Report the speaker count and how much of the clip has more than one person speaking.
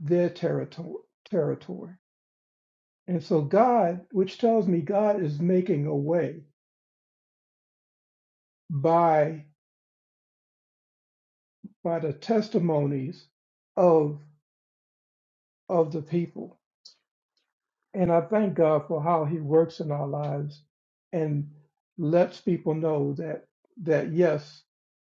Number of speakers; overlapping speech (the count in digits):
1, no overlap